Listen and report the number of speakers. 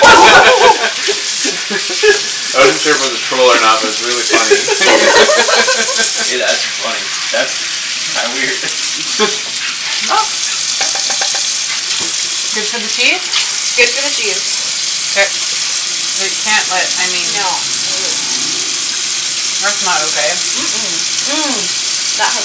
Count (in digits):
4